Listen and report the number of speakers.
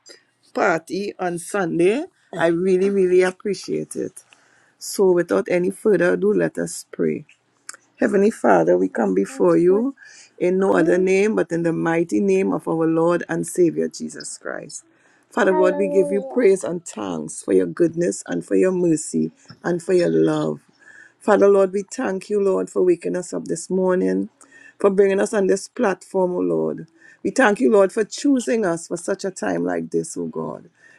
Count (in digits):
1